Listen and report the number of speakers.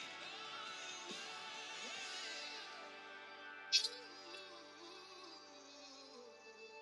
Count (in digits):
0